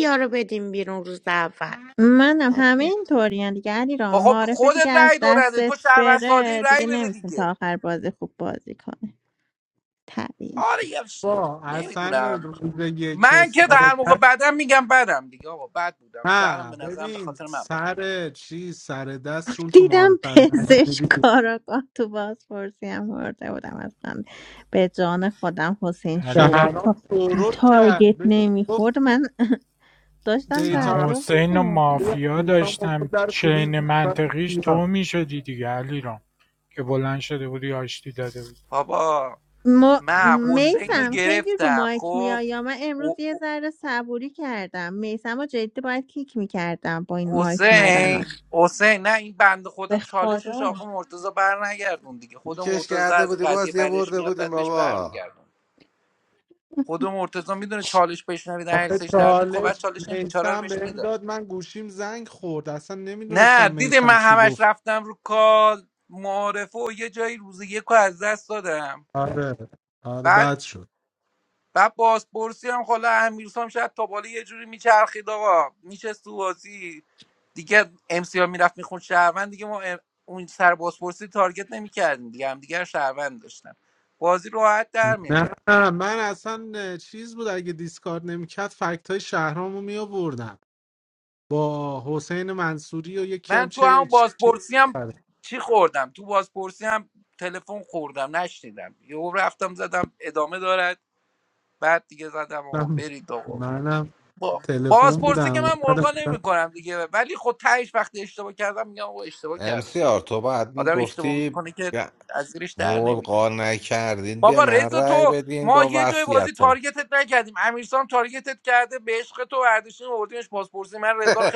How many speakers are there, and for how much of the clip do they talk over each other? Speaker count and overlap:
6, about 27%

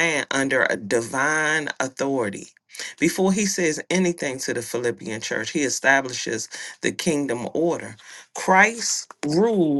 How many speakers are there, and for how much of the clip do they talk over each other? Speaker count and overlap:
1, no overlap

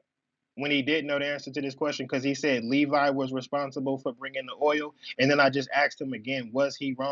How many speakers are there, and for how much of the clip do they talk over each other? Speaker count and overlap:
1, no overlap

